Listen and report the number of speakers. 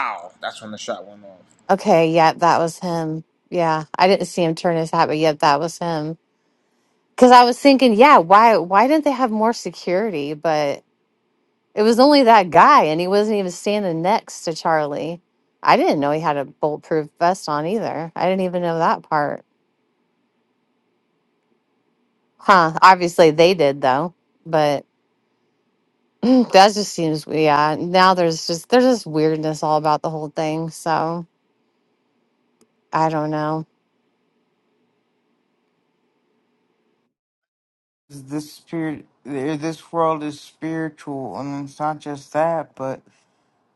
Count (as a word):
three